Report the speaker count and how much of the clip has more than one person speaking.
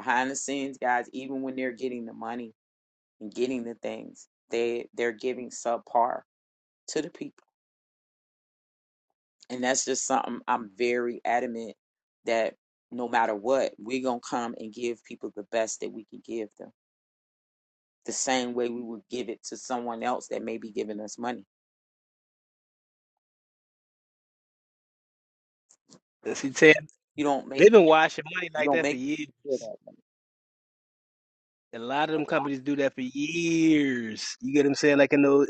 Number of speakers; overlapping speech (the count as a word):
two, about 2%